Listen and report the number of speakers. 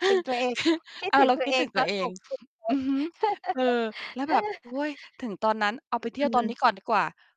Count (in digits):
2